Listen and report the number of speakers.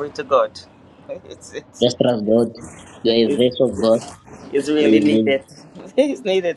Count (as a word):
two